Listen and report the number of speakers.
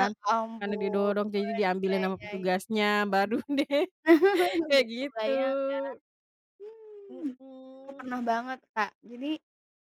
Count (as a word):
two